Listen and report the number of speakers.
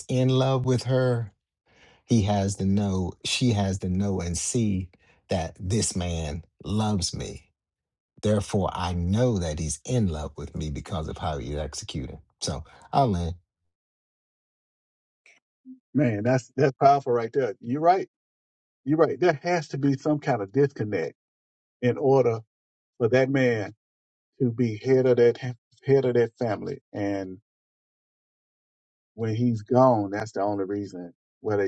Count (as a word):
two